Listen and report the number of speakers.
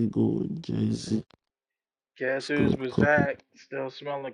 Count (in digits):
2